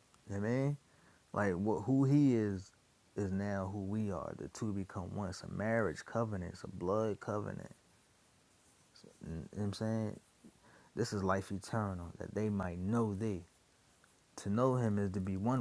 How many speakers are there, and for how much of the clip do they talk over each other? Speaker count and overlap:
1, no overlap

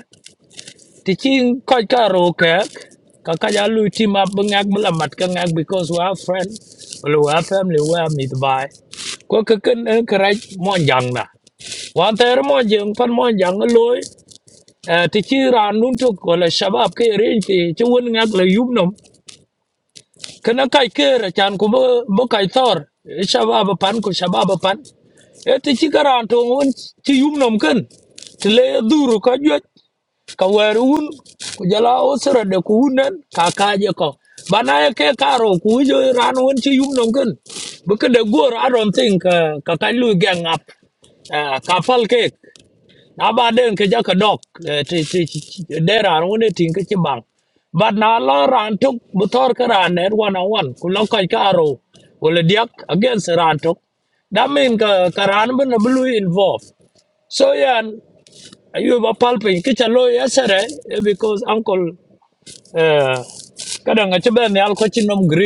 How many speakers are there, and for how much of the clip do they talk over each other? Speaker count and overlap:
1, no overlap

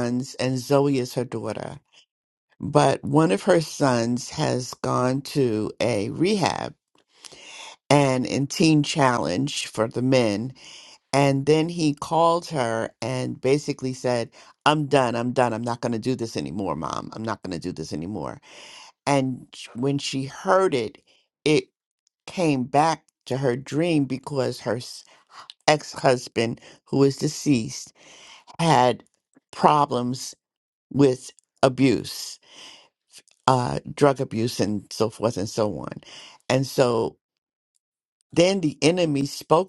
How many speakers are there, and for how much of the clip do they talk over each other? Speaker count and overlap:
1, no overlap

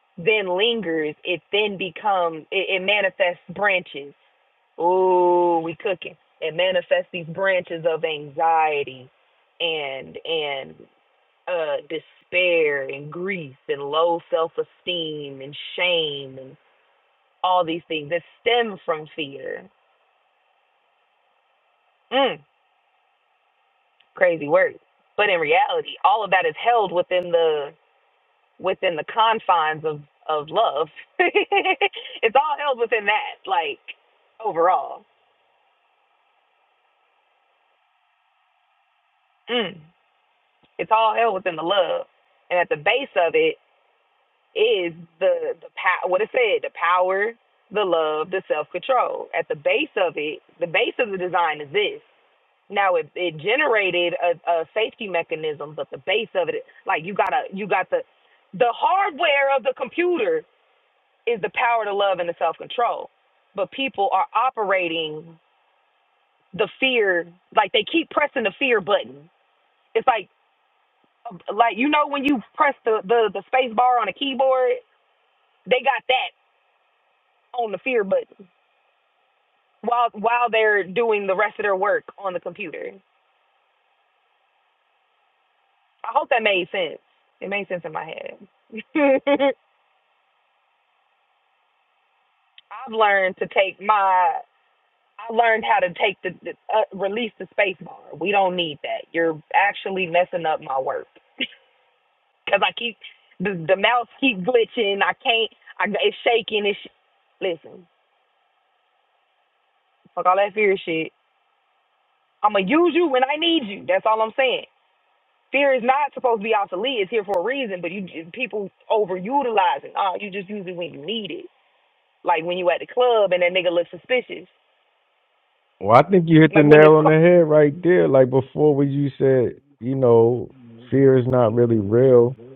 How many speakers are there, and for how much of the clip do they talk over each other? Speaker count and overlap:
2, about 1%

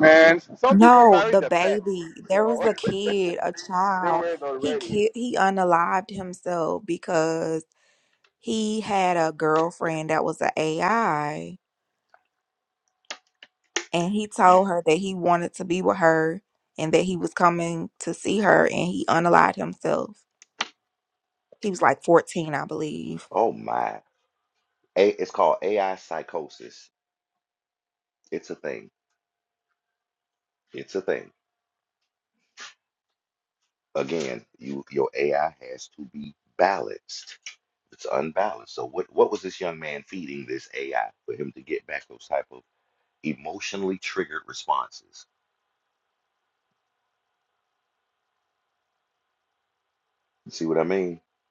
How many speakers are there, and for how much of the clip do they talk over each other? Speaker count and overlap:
3, about 4%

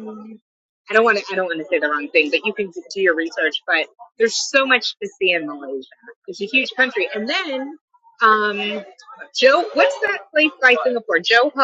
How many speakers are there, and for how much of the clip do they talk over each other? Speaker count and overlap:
1, no overlap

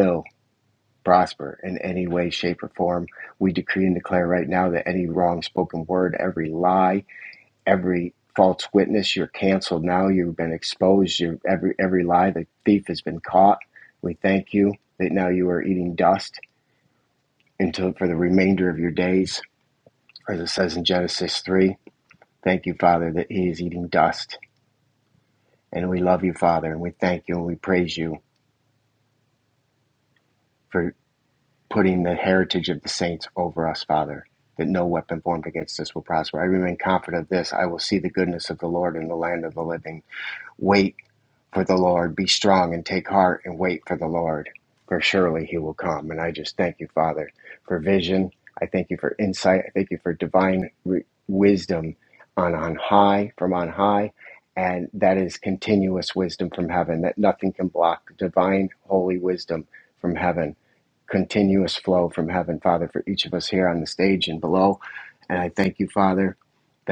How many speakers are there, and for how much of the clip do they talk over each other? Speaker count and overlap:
1, no overlap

